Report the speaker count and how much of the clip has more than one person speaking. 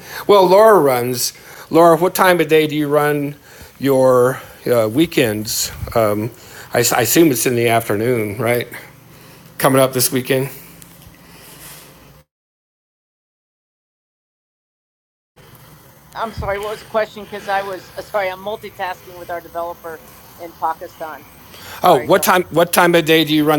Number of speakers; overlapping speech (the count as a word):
two, about 2%